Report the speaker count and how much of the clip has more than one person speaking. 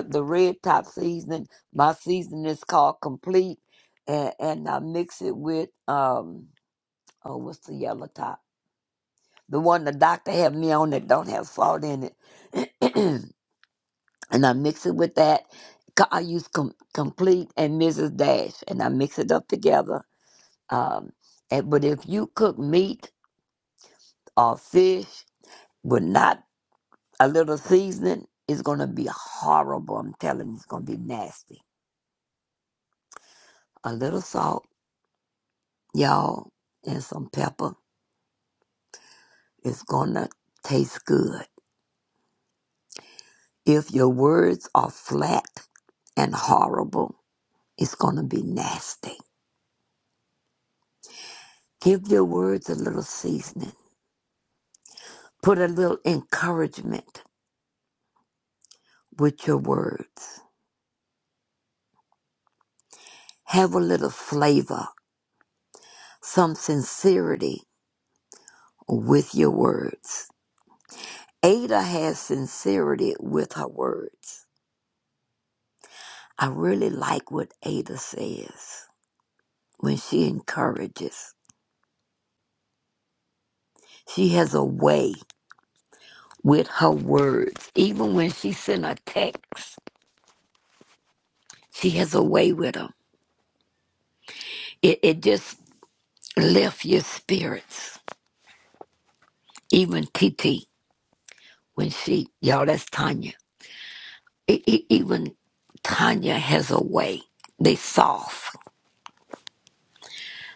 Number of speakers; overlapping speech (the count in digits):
1, no overlap